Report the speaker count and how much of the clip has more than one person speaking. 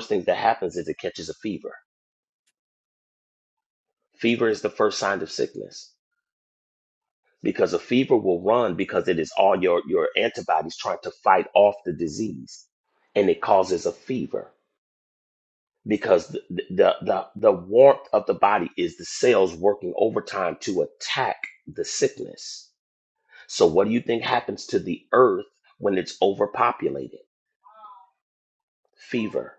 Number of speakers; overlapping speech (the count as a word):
one, no overlap